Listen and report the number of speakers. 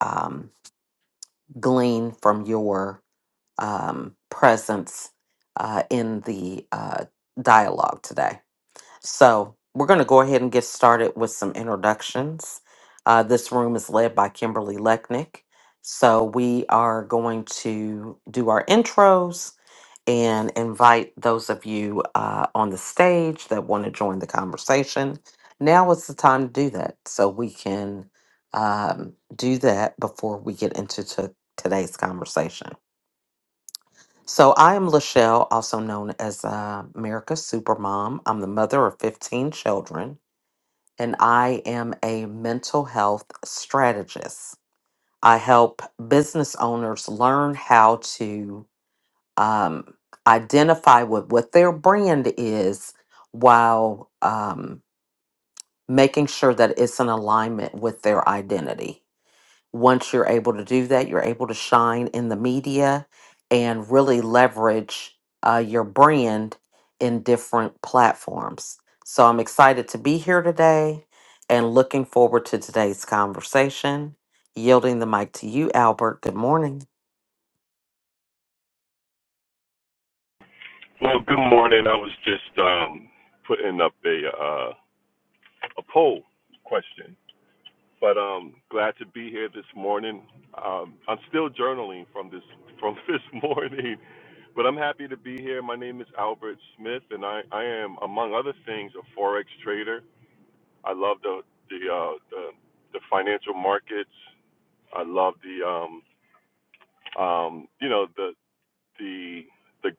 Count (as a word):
two